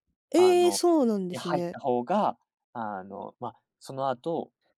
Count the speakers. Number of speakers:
2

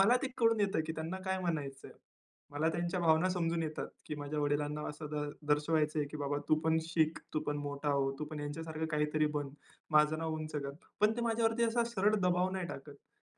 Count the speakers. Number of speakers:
1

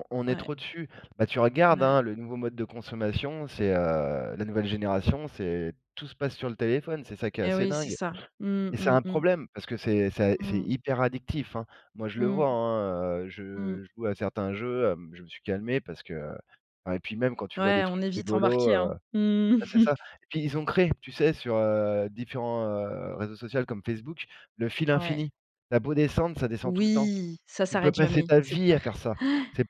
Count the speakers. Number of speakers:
2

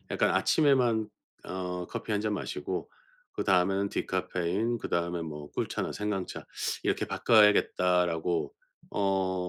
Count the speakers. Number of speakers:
1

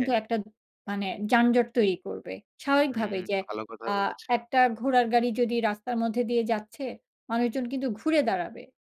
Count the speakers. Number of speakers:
2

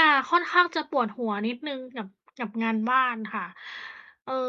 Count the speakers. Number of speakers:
1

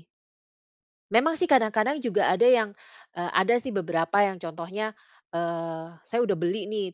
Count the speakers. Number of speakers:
1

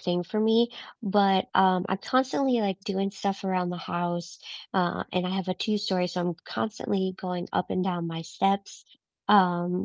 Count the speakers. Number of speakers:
1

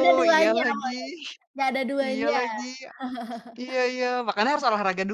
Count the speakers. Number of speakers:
2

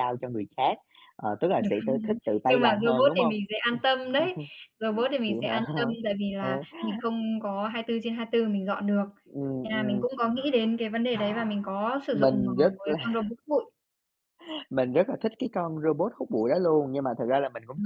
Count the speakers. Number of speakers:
2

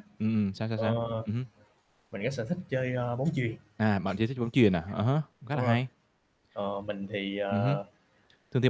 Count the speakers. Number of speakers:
2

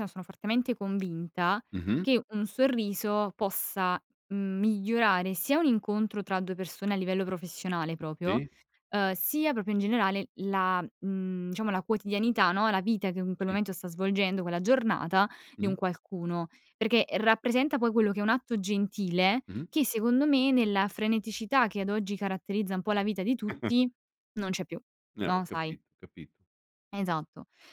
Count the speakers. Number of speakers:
2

